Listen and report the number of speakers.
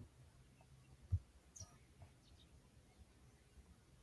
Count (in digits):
0